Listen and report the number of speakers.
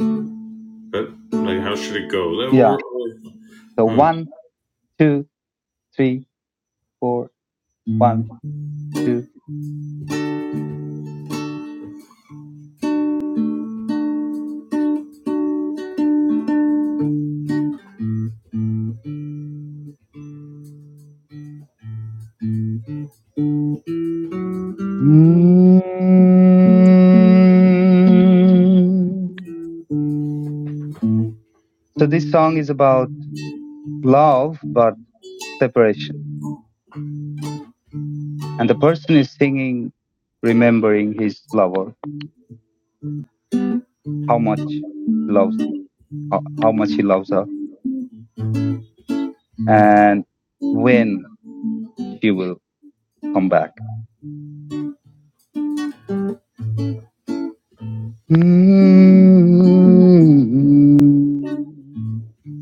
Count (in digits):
2